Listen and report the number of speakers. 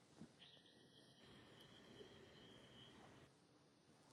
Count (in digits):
0